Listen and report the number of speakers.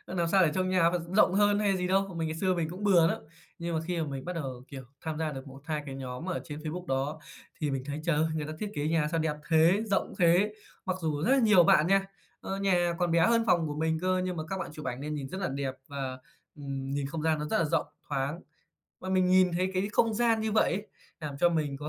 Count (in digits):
1